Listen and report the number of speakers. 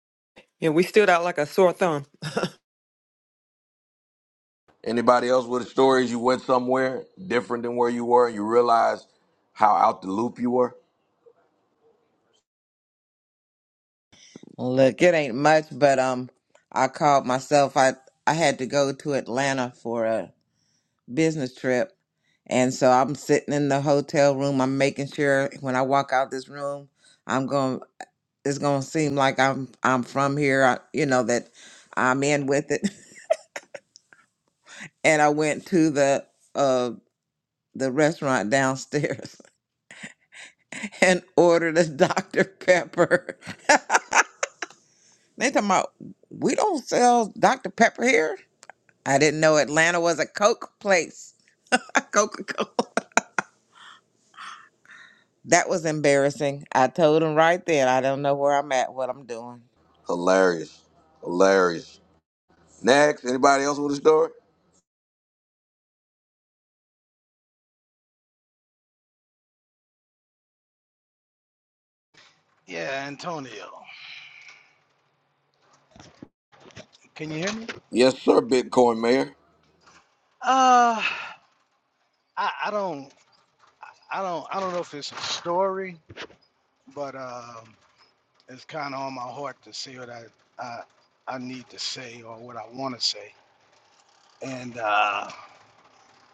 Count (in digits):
4